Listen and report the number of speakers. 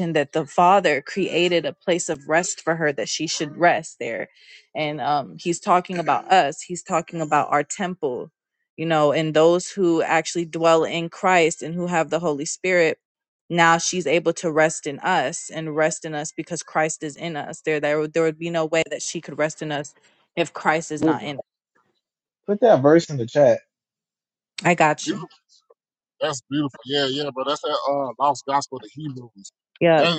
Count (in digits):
3